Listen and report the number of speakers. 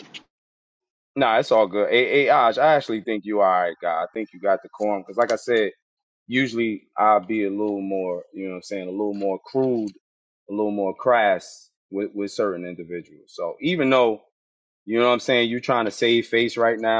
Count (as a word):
one